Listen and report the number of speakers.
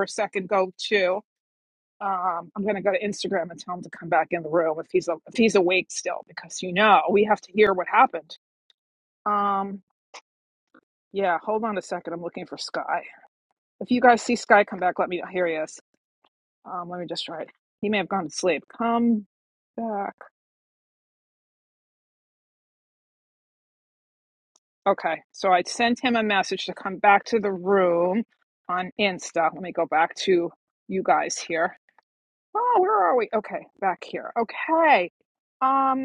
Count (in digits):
1